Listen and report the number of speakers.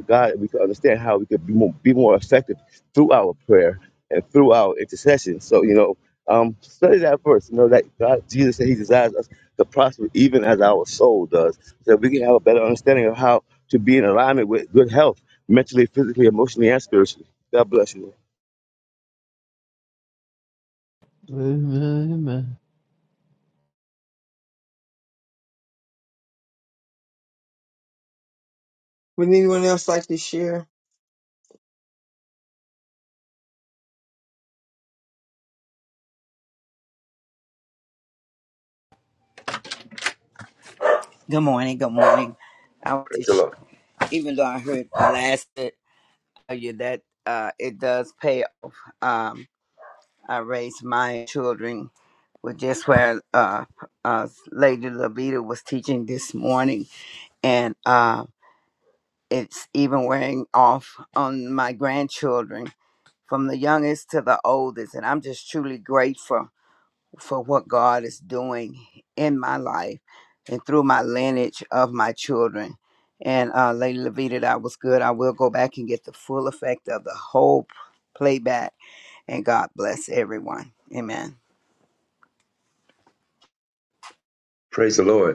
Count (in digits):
5